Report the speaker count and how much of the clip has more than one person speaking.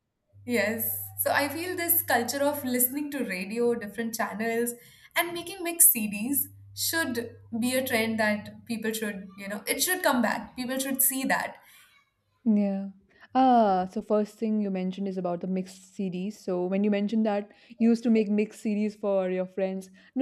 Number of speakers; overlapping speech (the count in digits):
2, no overlap